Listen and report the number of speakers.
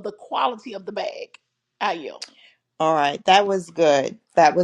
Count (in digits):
2